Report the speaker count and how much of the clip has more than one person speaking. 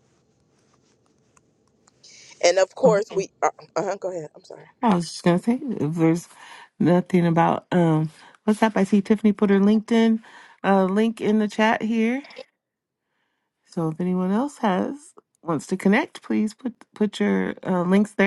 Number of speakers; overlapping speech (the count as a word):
two, no overlap